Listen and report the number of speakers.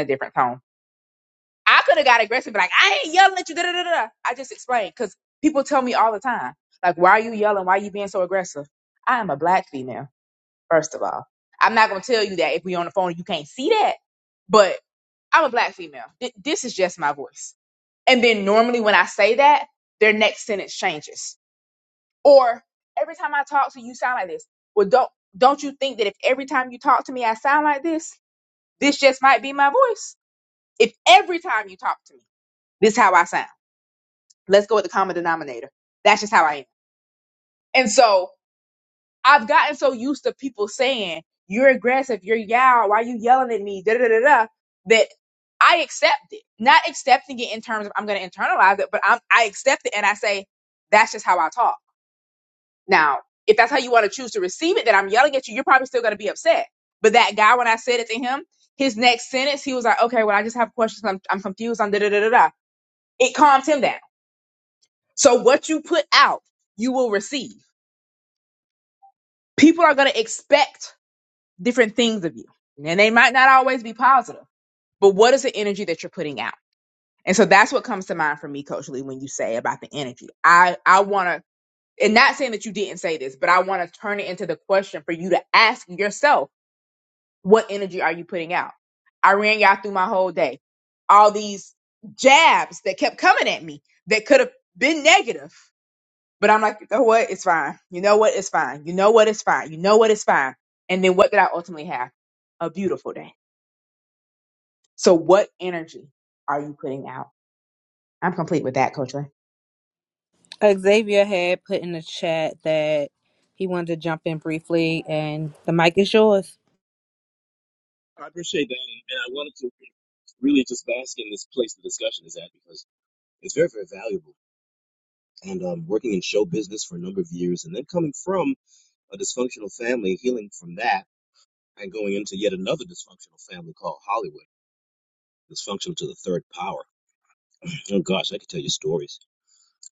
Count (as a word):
three